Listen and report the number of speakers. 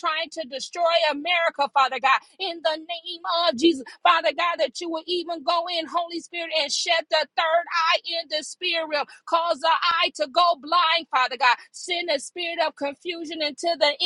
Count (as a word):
one